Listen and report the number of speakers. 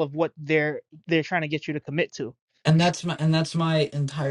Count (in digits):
2